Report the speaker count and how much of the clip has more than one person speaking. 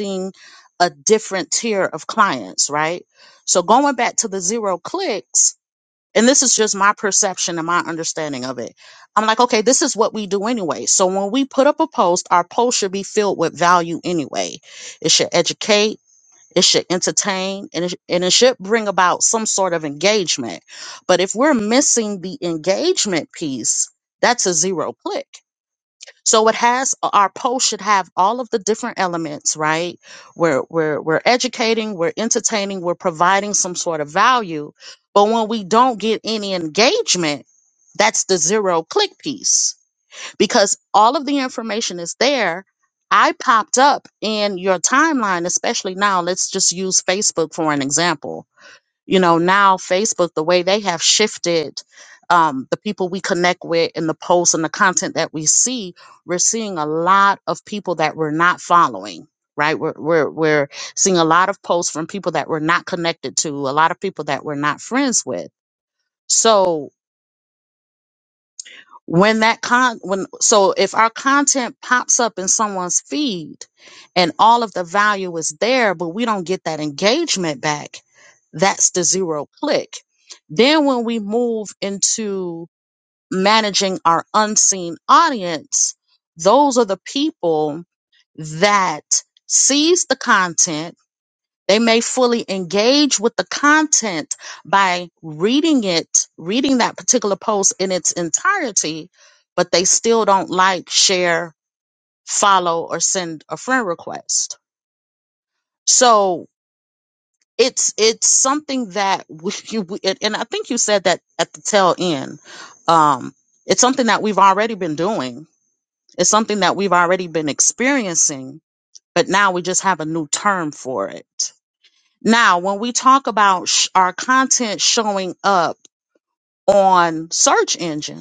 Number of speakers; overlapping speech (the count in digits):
1, no overlap